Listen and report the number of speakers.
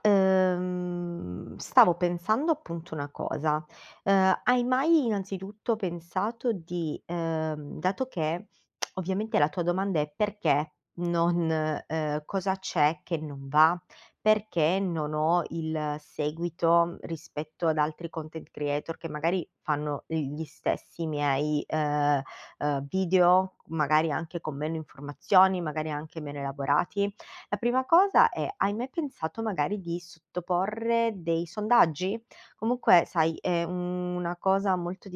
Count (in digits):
1